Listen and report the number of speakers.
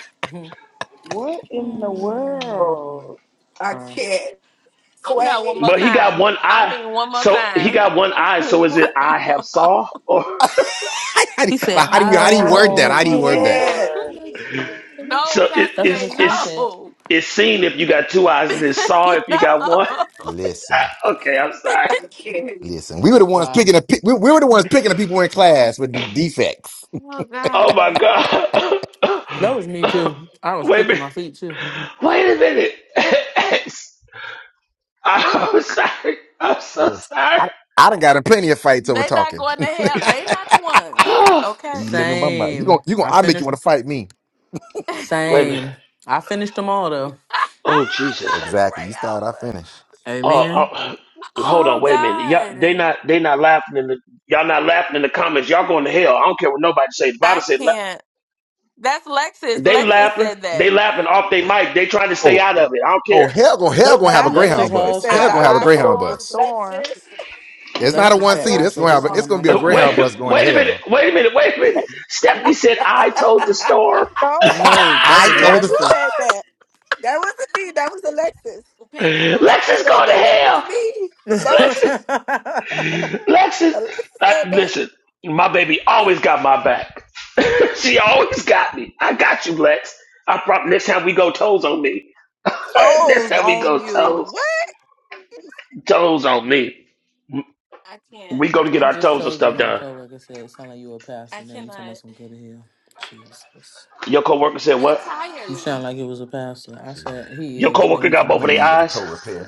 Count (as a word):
seven